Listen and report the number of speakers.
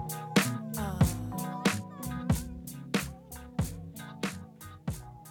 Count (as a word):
zero